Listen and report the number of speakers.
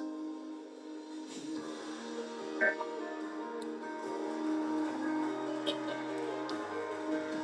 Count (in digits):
0